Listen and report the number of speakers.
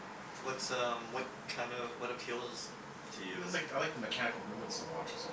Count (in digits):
2